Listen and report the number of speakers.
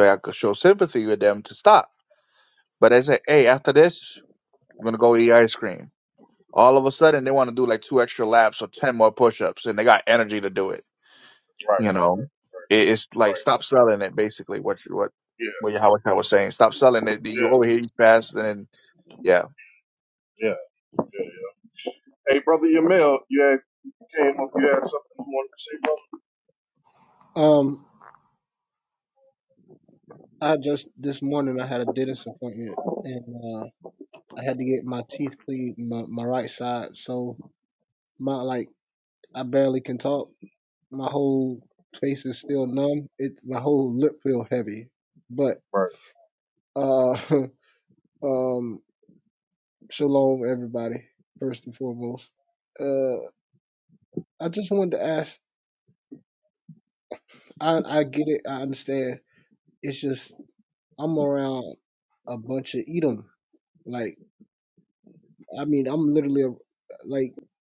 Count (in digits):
3